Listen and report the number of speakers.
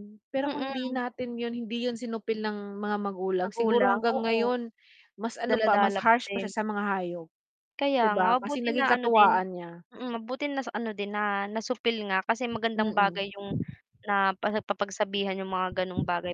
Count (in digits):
2